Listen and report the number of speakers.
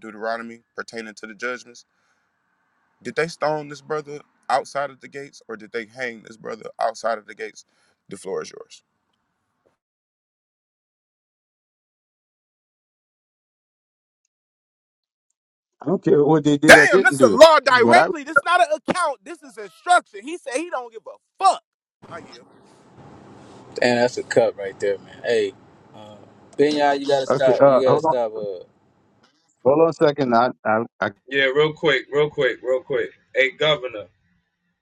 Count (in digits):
4